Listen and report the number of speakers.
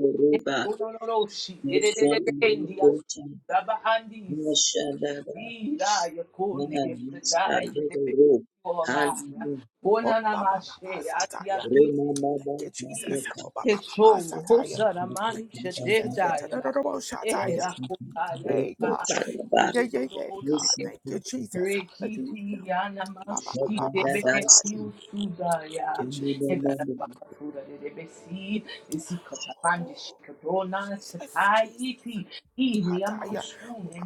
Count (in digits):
3